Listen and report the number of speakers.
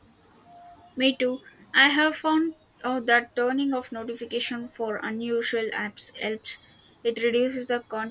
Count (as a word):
one